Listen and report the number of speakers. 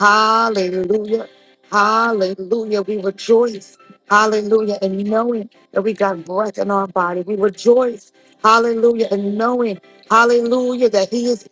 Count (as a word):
one